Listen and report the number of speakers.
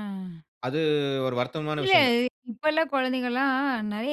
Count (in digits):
2